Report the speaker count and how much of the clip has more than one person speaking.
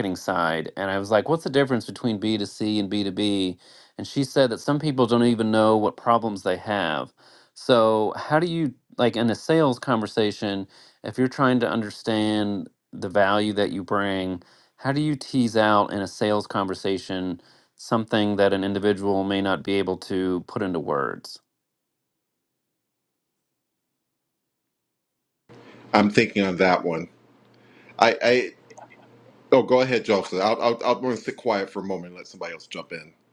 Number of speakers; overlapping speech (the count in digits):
2, no overlap